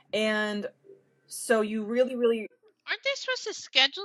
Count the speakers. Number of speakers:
2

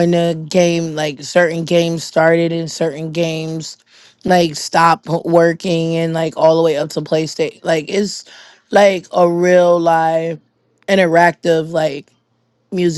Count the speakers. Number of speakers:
1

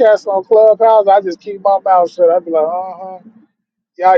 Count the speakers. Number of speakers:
1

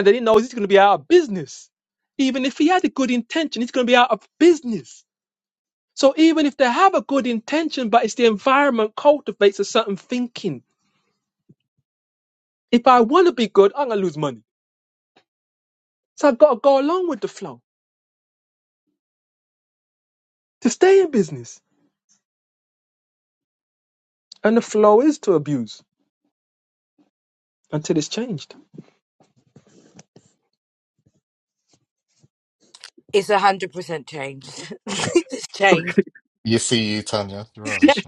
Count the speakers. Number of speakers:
3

